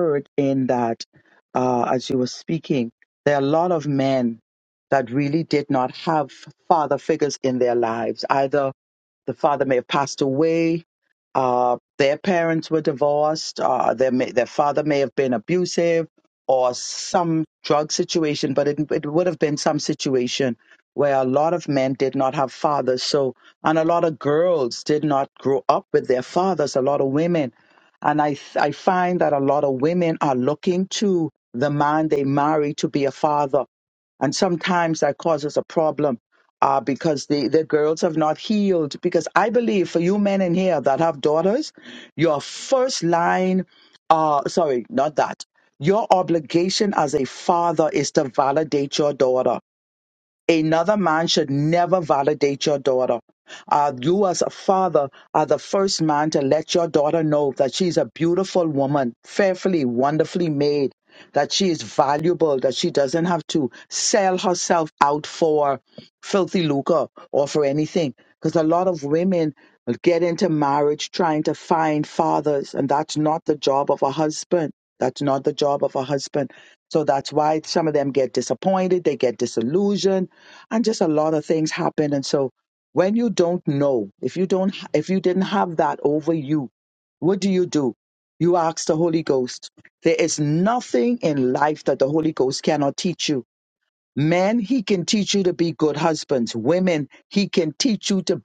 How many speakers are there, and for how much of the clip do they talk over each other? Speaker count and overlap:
one, no overlap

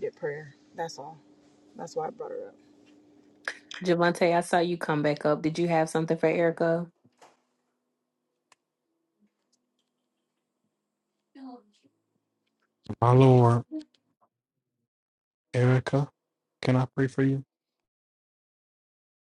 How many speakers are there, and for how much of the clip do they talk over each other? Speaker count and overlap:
three, no overlap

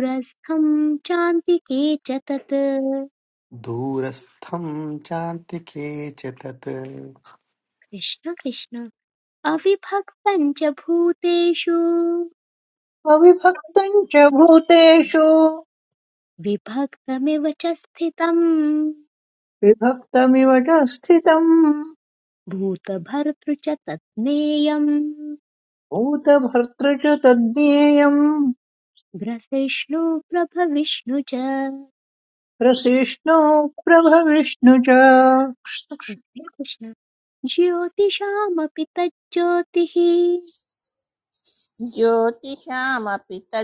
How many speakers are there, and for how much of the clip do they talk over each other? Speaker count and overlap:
four, no overlap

